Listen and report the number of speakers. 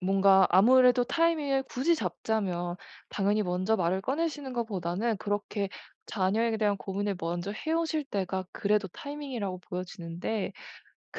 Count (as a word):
one